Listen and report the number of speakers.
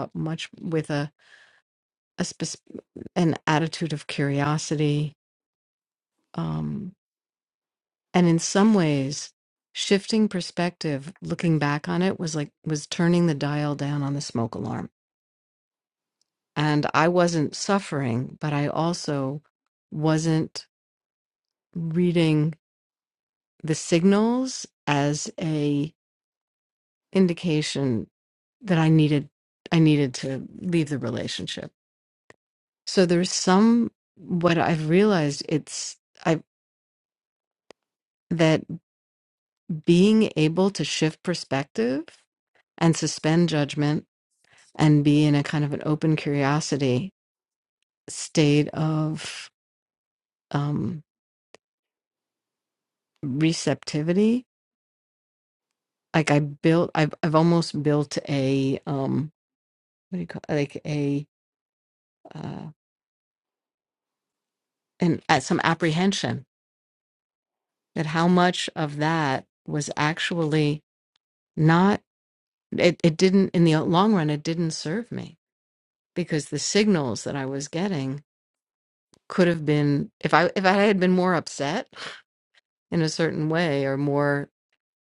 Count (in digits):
1